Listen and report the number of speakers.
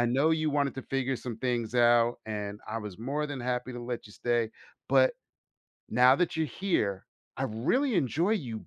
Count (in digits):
1